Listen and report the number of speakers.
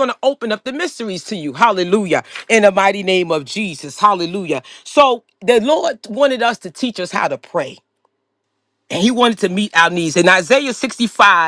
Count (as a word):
one